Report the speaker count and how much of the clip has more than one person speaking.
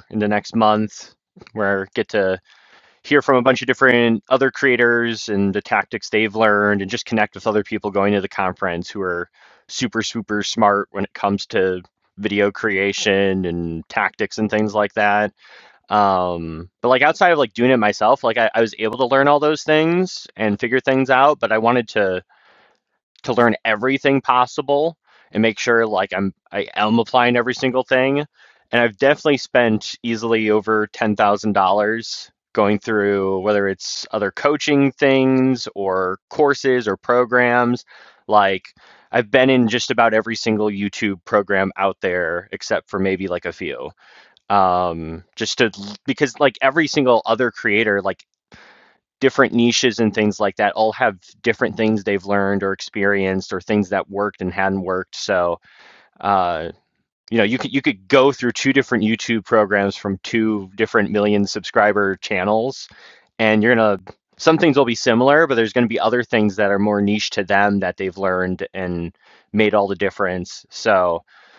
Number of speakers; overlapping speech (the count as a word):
one, no overlap